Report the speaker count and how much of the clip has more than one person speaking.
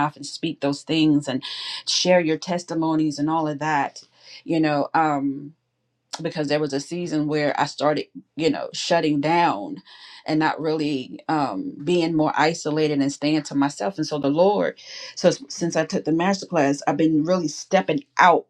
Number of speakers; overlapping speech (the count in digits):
1, no overlap